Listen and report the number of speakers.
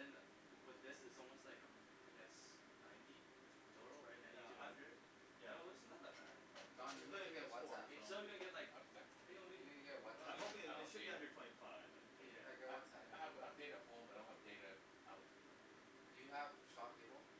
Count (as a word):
four